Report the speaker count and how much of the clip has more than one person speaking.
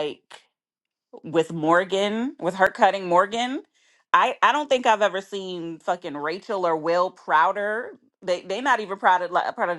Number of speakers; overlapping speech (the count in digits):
1, no overlap